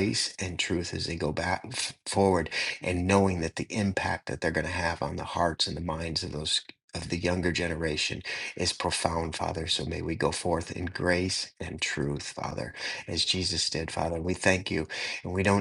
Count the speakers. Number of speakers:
one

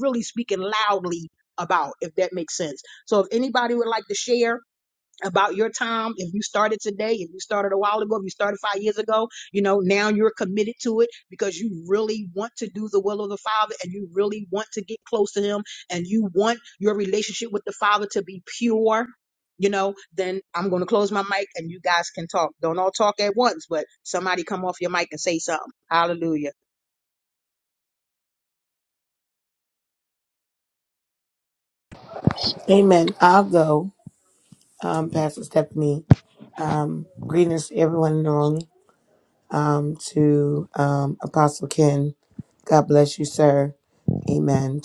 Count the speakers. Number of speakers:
two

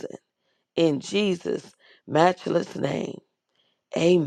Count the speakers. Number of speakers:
one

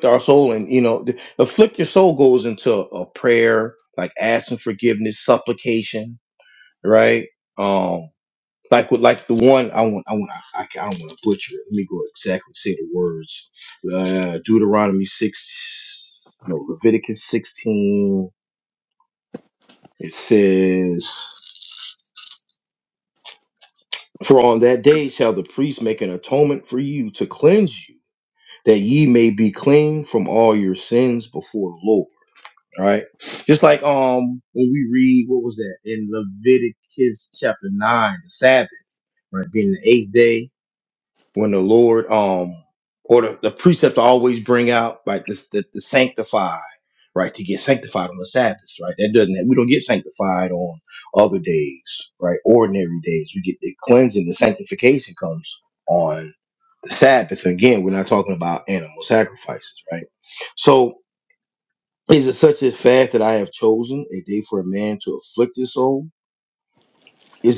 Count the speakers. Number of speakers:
one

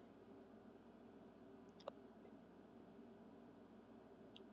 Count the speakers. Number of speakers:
zero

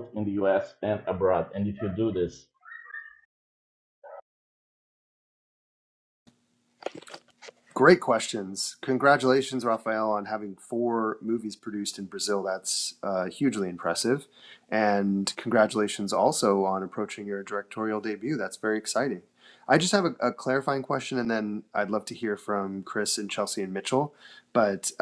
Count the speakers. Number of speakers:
two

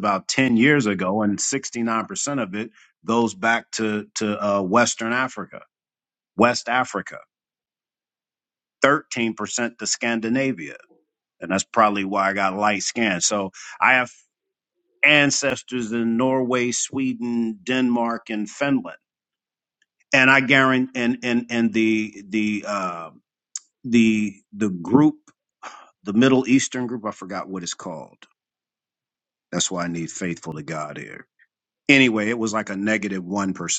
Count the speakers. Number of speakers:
one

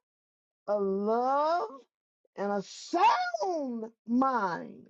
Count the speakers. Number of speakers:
one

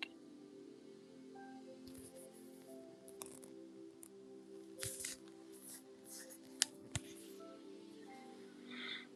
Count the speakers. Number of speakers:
zero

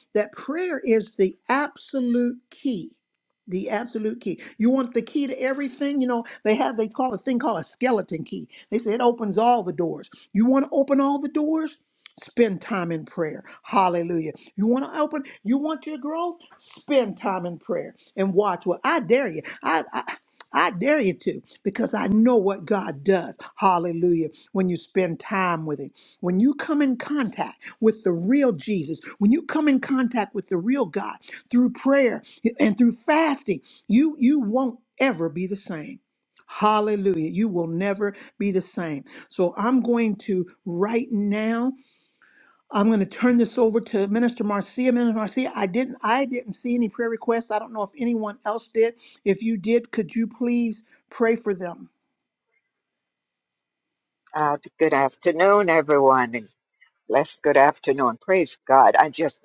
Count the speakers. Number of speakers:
two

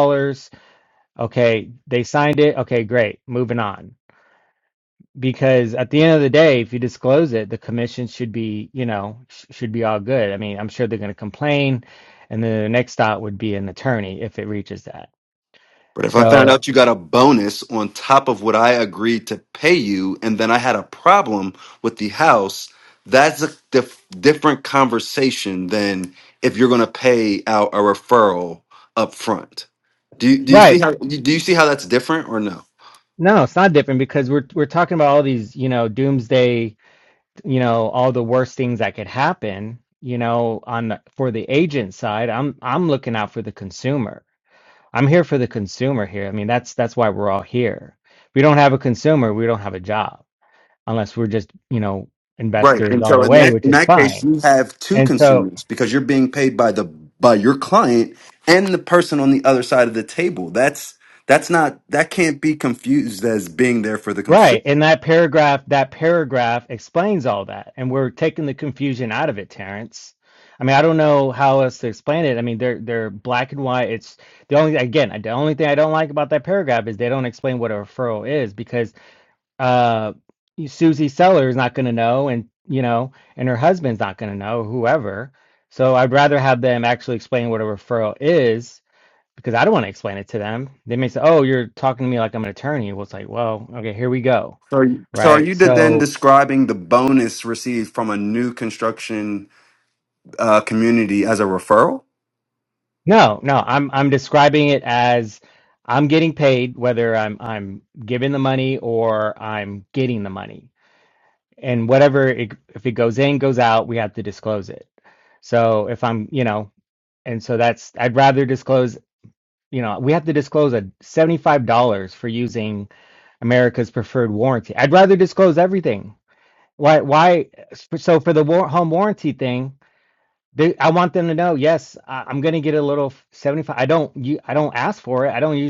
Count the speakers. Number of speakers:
two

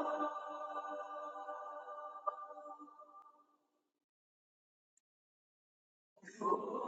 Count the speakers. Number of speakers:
zero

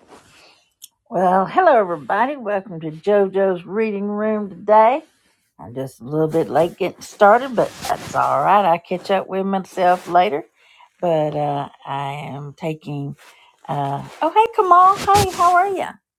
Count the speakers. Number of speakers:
one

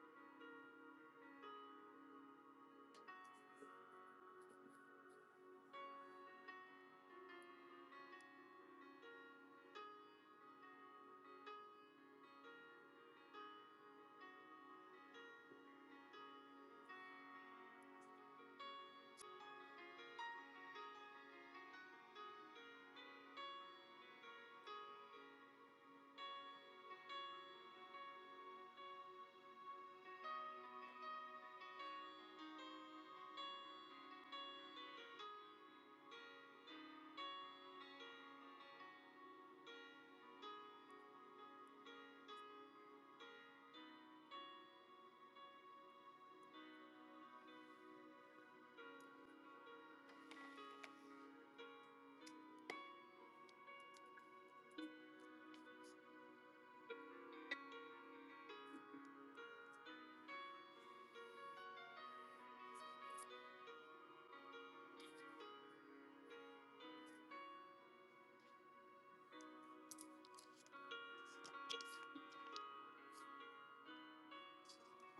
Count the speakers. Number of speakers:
zero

